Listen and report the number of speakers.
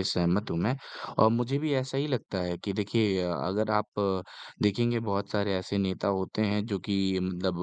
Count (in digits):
1